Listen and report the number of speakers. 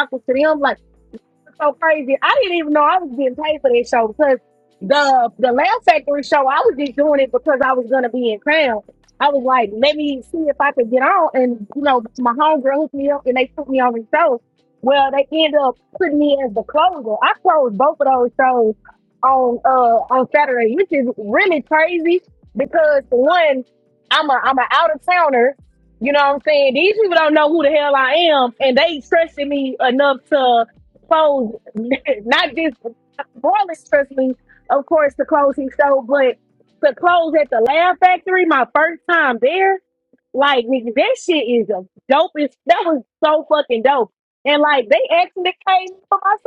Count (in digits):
1